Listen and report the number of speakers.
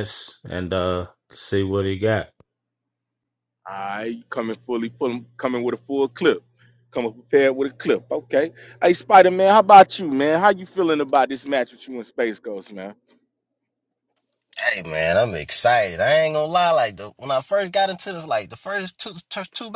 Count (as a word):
three